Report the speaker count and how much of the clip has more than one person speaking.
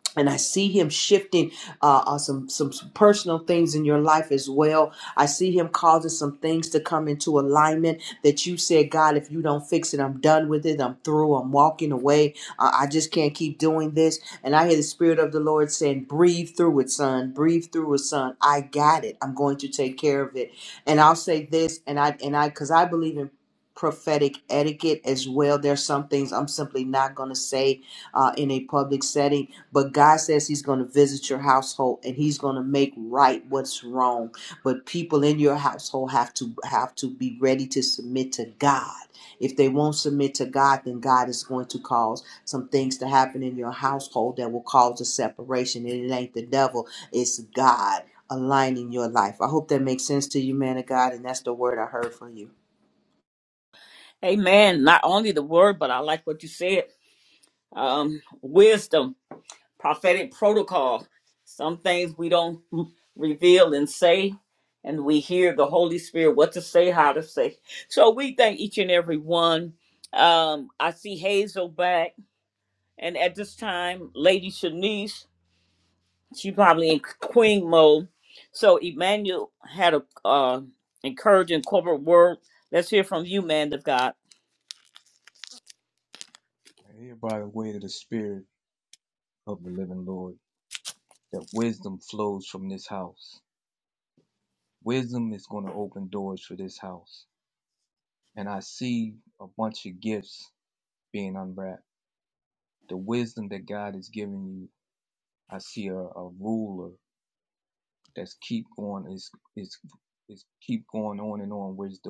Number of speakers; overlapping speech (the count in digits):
3, no overlap